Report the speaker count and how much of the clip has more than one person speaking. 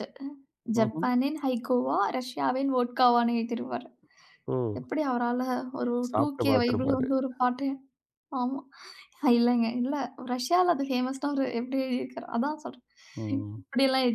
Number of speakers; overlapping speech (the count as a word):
two, about 10%